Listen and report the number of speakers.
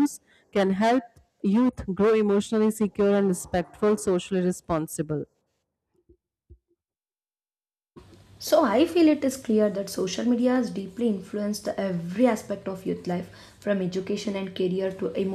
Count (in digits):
2